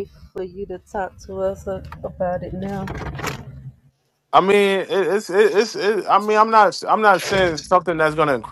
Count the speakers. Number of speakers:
two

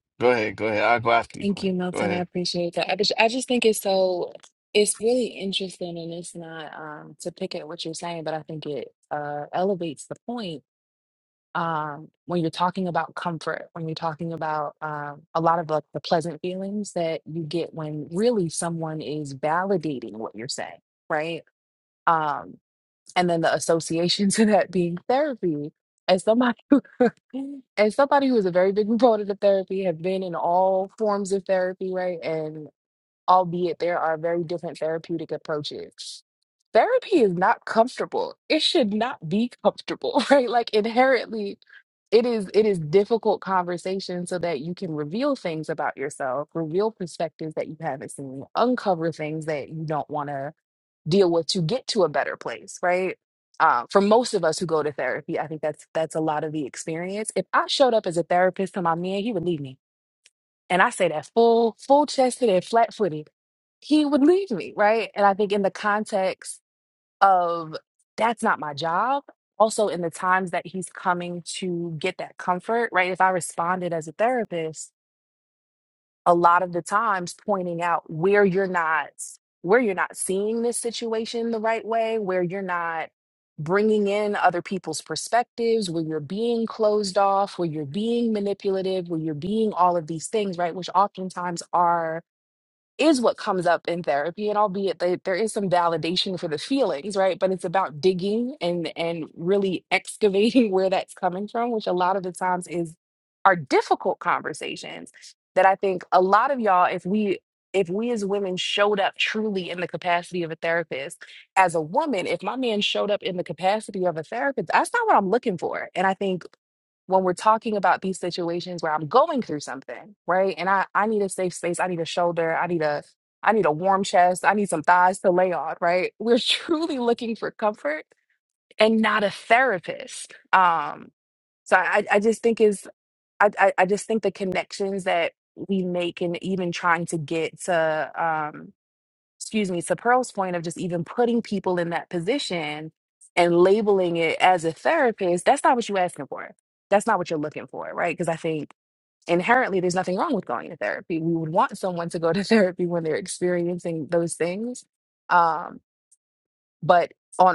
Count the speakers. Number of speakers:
two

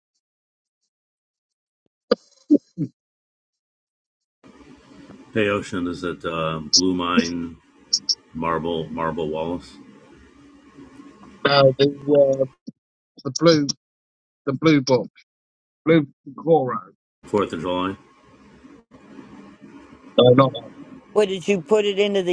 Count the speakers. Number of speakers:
three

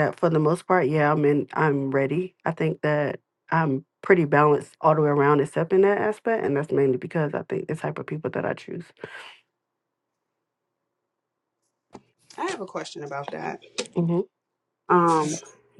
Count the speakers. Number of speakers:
two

